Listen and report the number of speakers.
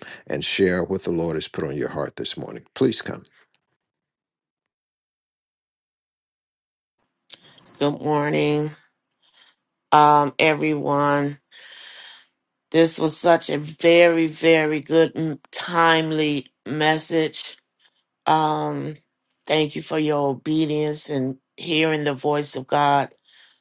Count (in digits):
2